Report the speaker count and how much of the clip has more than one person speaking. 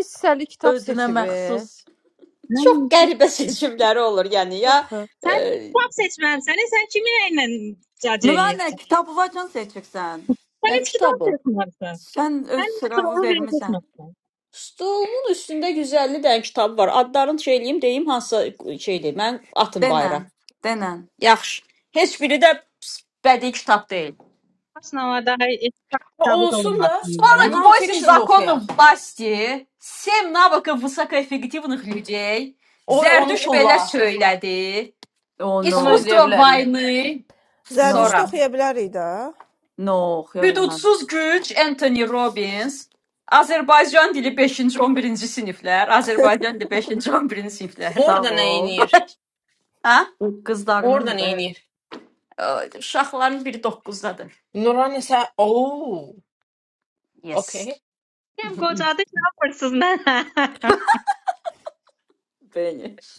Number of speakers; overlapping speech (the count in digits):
6, about 17%